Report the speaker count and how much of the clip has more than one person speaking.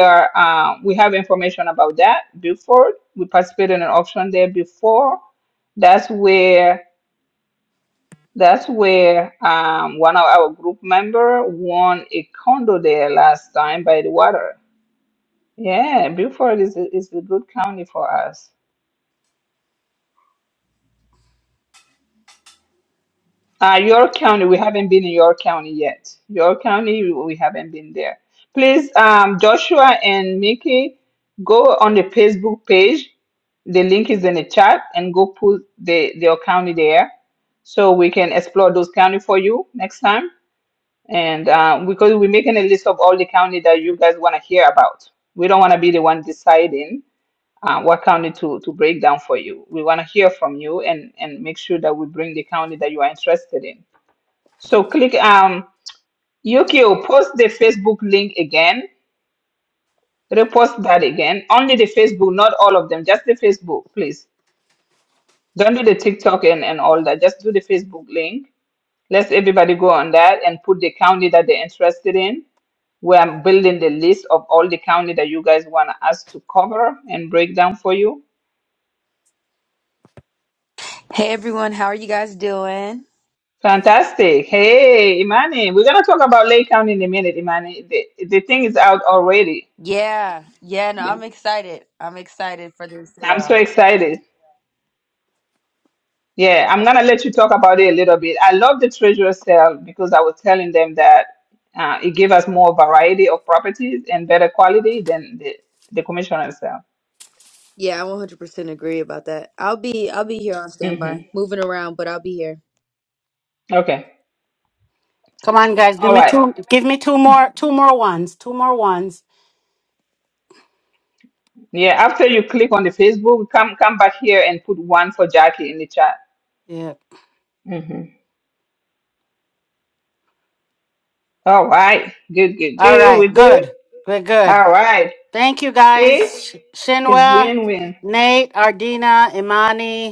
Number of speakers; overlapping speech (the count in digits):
3, about 2%